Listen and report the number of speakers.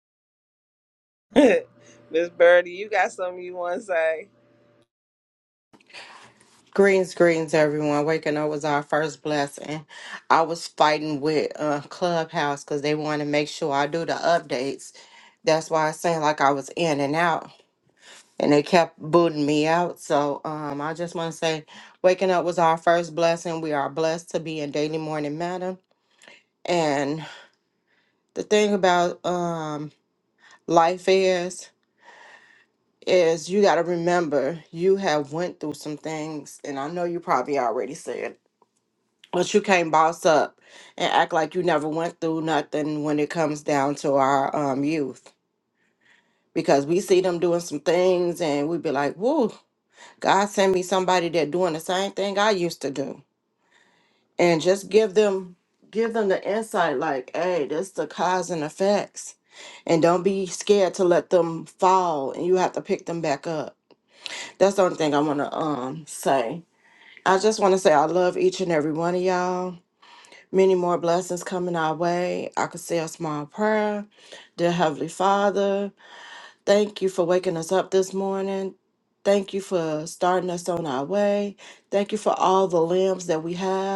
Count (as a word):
two